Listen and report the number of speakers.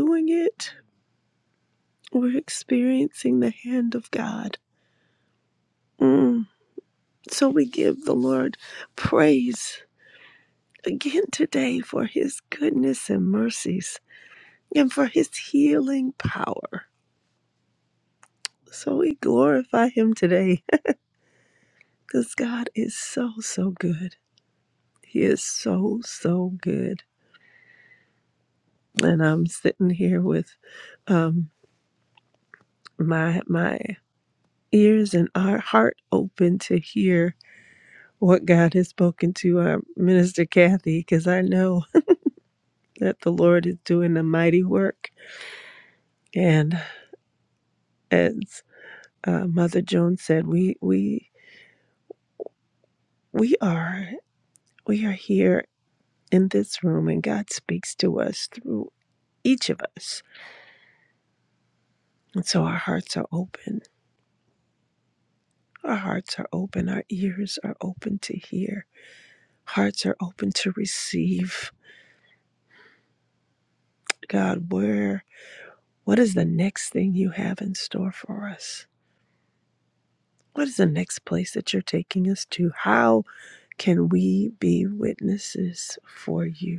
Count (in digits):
1